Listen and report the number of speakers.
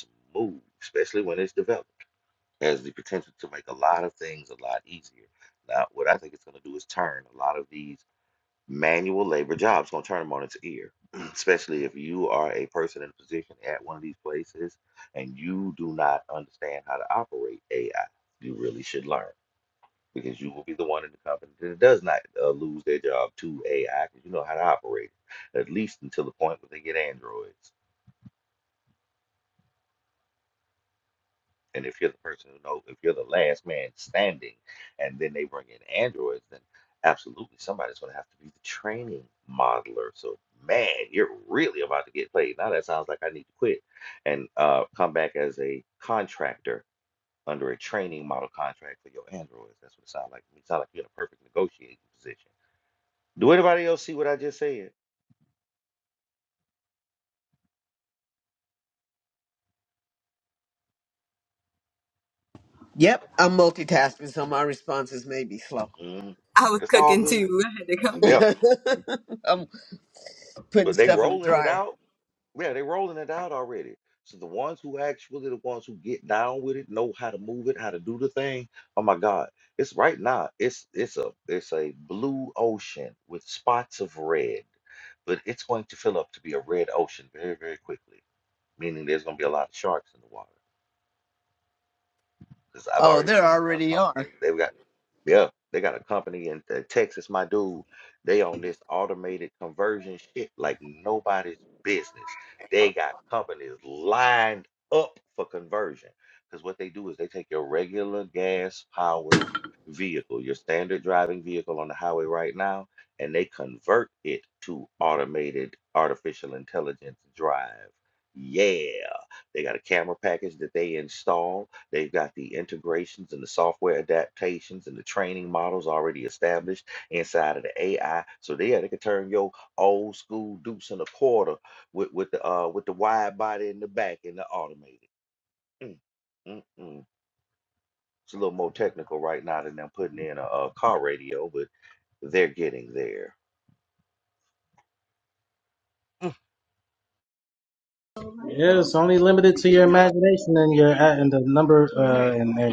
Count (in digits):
4